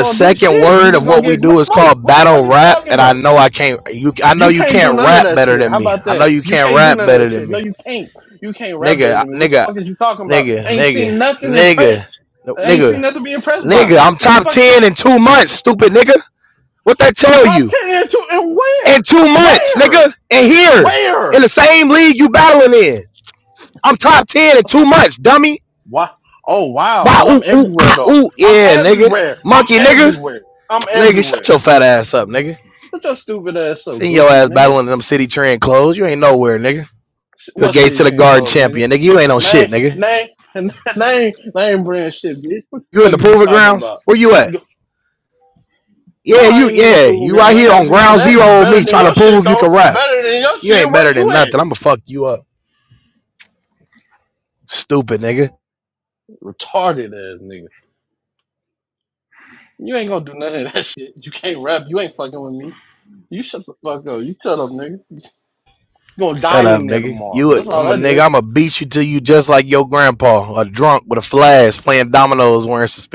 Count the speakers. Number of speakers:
2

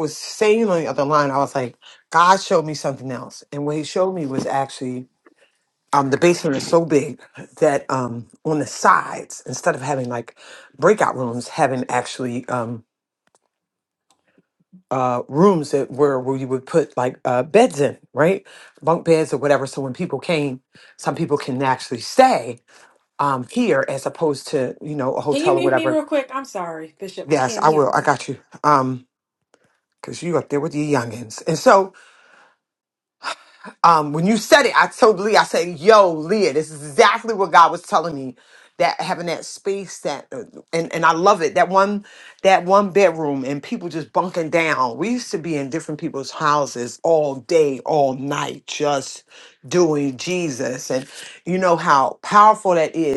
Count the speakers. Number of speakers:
2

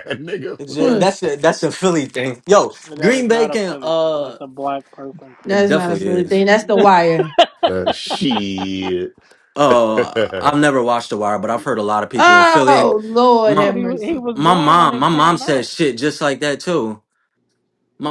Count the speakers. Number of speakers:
4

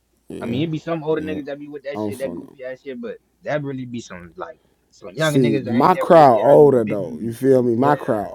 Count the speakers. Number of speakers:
2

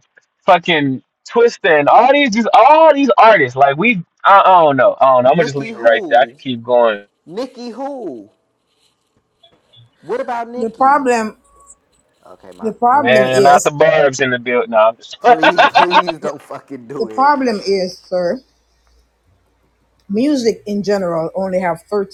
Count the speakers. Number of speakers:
3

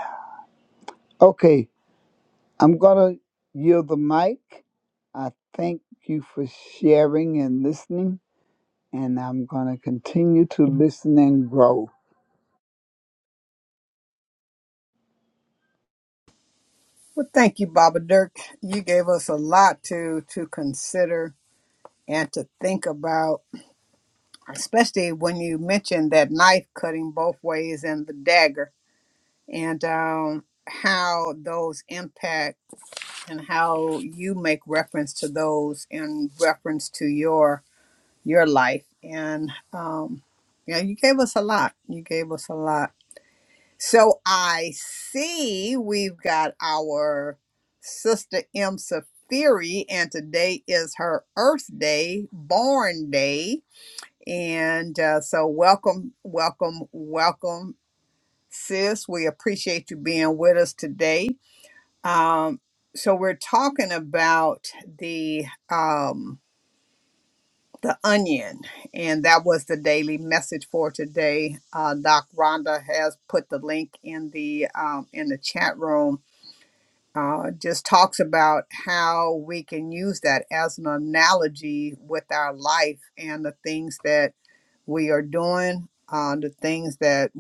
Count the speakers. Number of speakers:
2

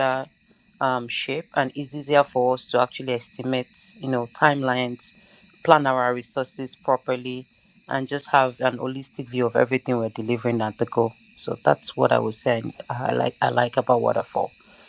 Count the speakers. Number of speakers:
1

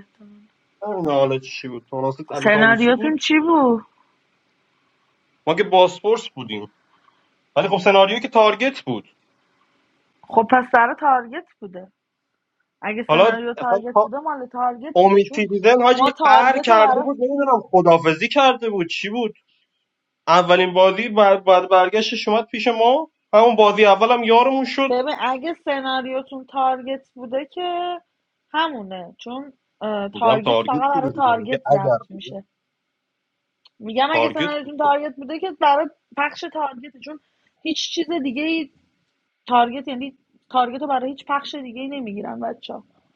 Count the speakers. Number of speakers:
2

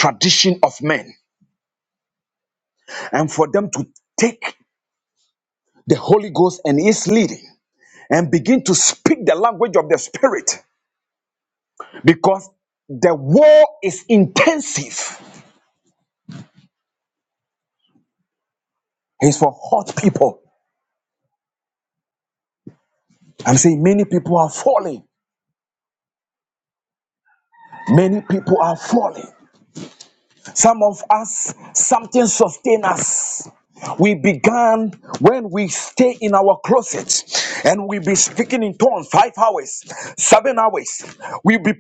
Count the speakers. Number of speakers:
1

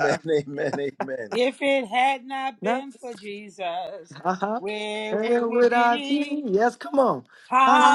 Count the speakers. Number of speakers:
3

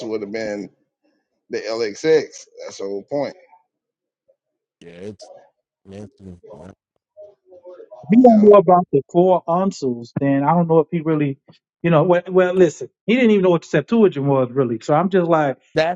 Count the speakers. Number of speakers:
3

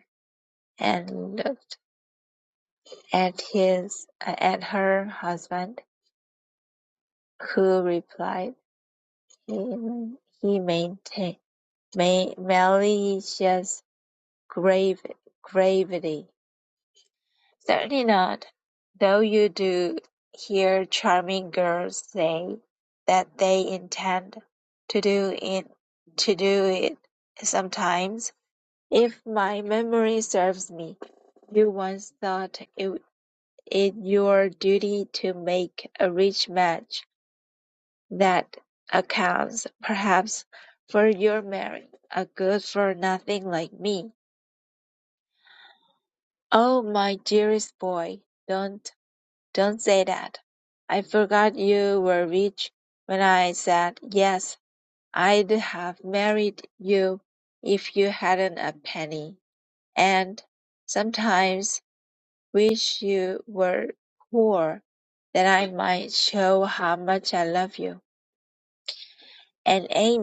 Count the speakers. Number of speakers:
1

